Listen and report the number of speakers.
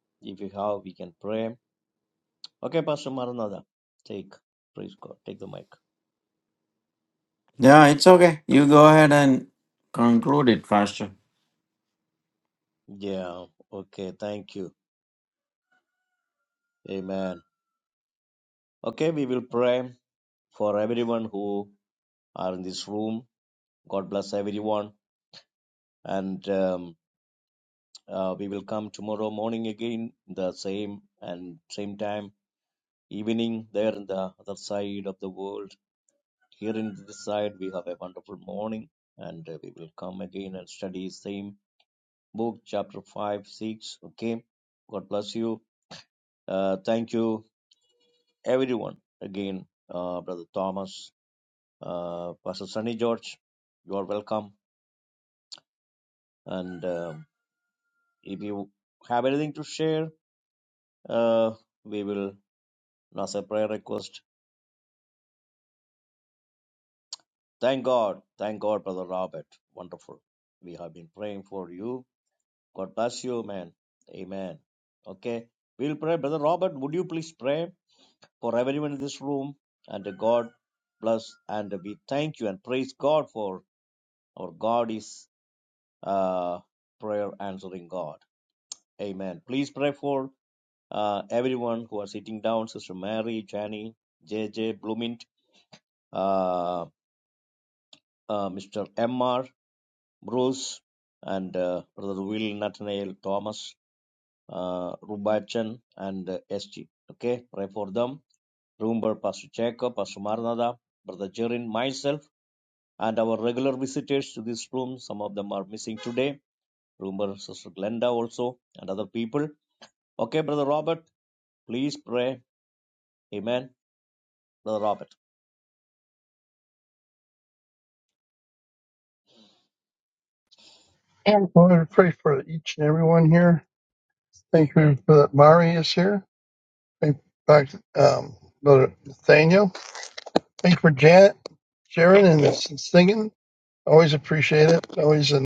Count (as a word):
three